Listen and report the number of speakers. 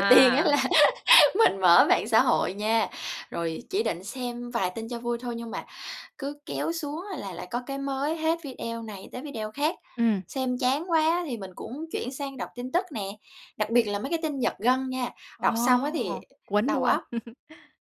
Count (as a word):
two